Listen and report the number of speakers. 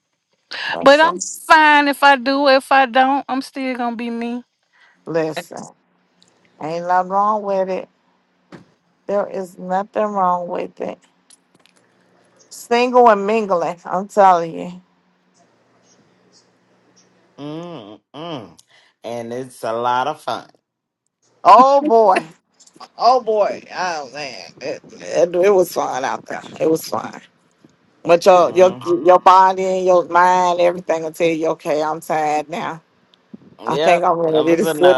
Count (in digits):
3